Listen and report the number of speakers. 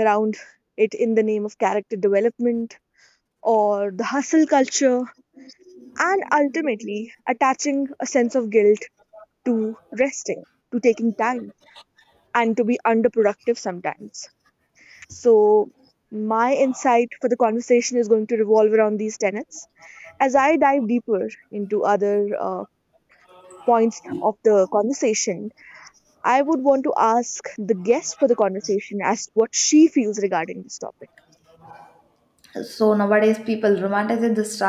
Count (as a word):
two